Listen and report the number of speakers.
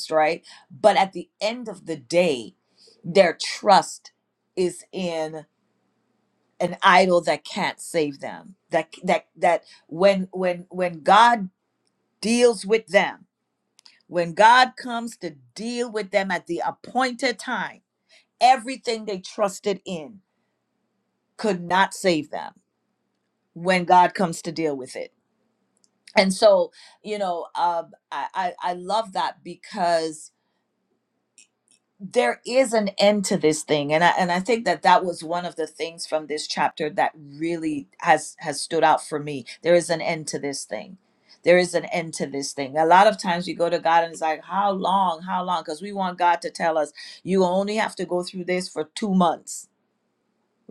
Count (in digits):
1